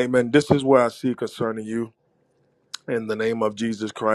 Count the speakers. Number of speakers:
one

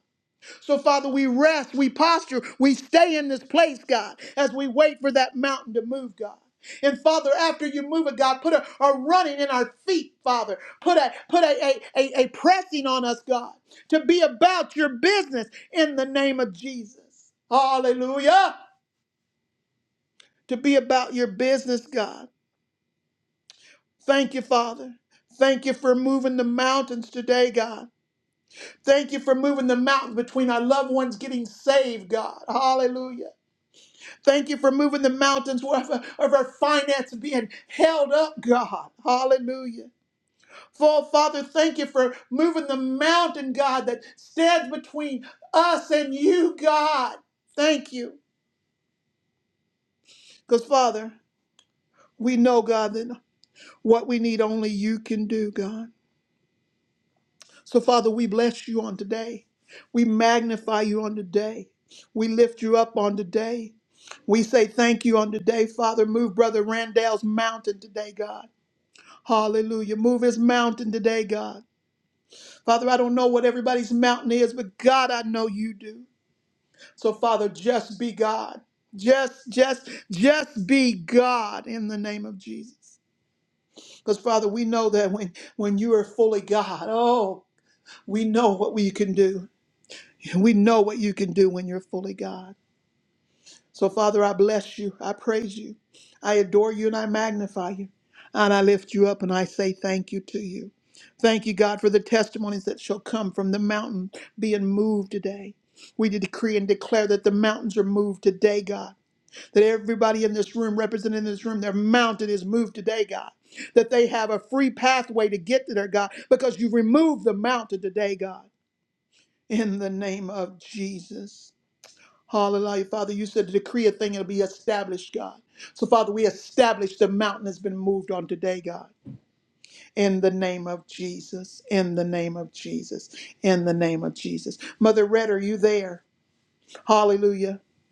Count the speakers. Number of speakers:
one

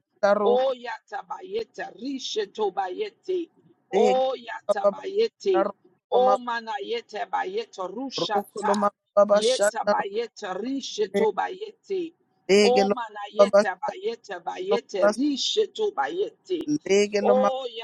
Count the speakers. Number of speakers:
two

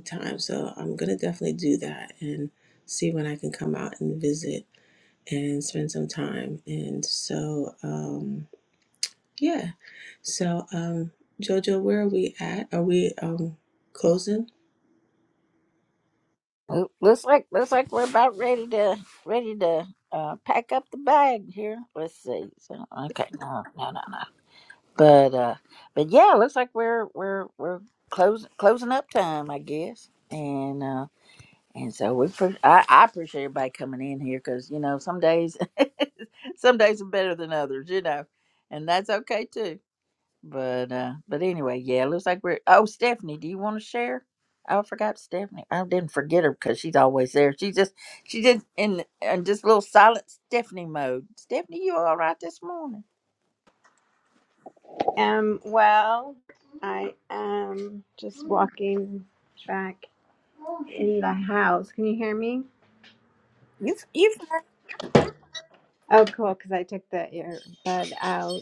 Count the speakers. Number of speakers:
three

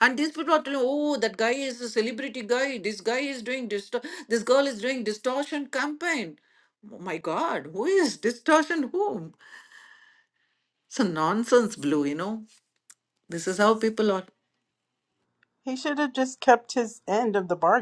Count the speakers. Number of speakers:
two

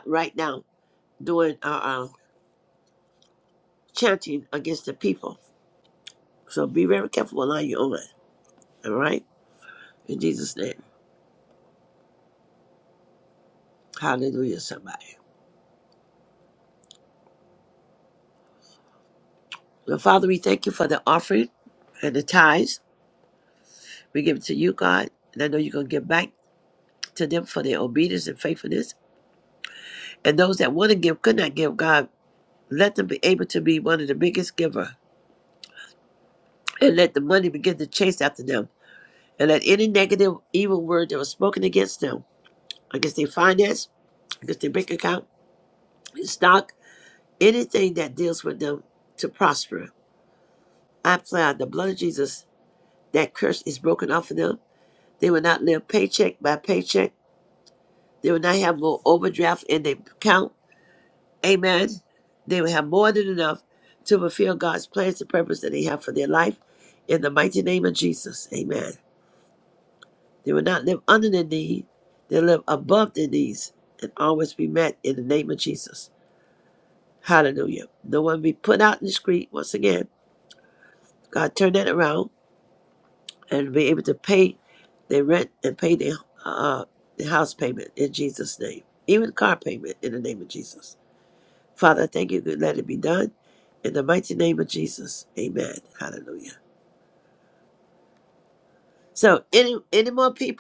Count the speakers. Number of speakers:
one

